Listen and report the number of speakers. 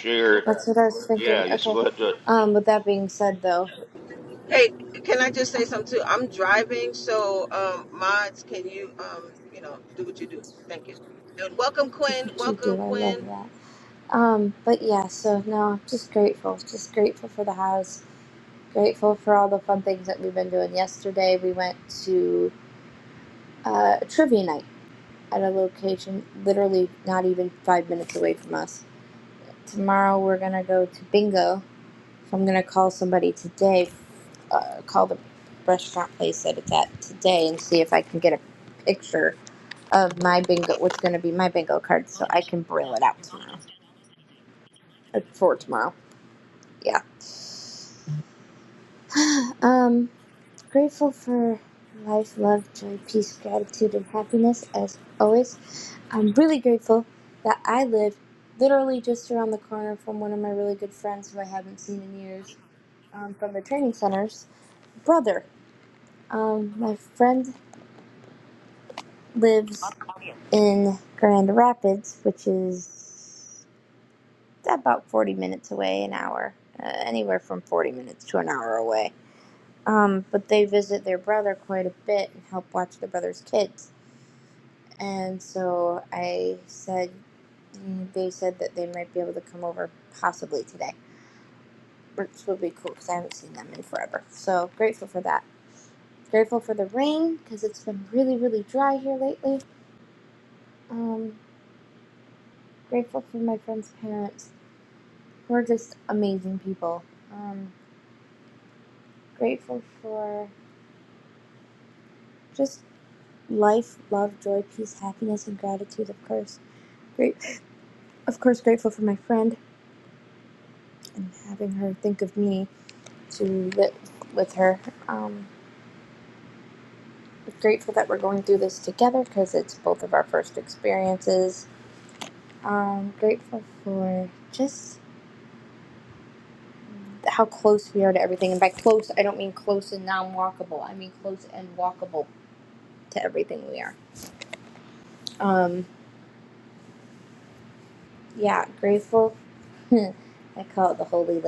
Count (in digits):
3